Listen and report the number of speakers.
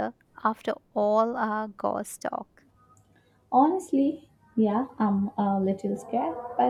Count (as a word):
two